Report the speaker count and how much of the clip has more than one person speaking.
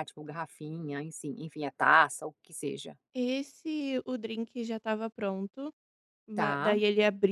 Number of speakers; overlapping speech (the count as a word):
two, about 6%